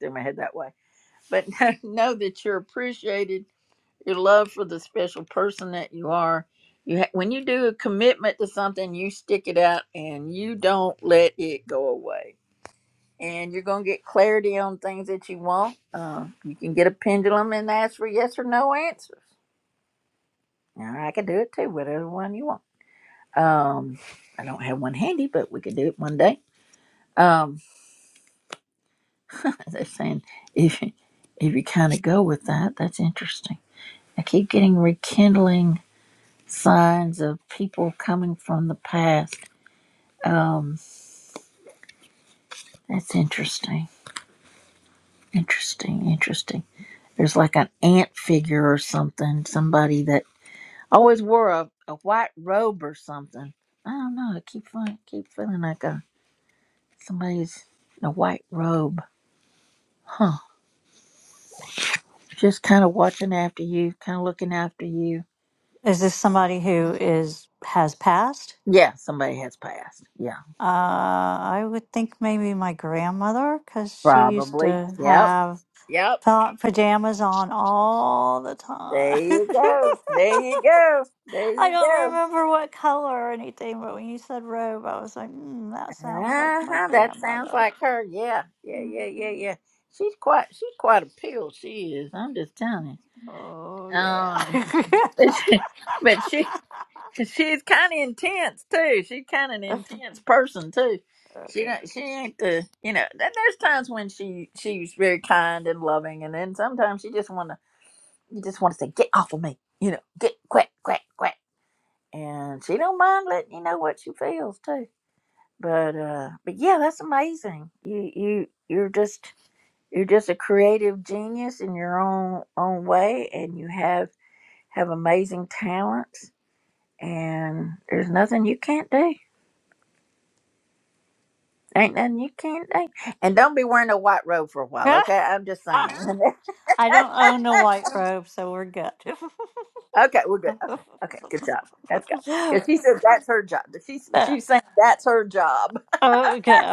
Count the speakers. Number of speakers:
2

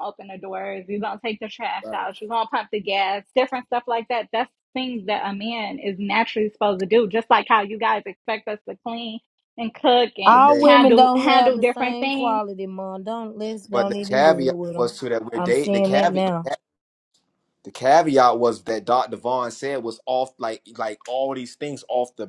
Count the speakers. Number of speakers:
3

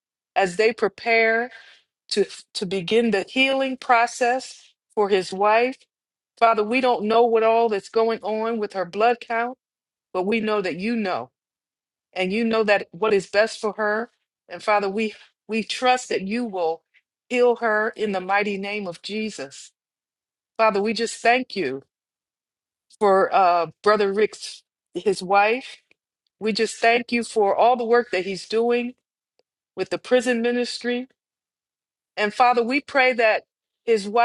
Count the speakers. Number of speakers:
1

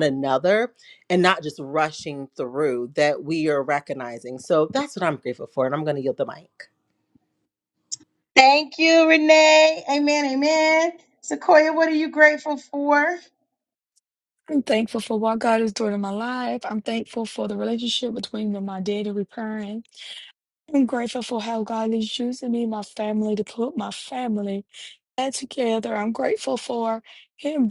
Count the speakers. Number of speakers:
3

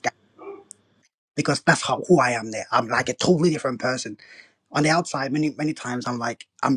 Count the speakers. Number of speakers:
1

